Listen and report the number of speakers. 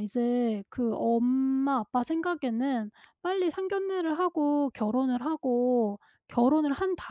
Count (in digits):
1